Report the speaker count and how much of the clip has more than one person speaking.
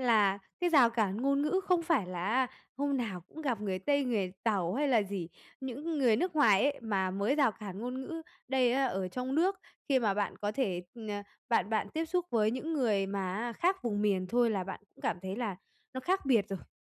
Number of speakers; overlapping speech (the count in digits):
1, no overlap